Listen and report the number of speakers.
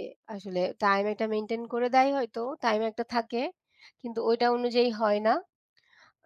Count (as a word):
one